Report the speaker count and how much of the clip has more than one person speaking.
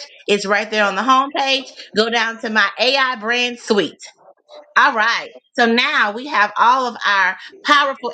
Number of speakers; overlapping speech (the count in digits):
1, no overlap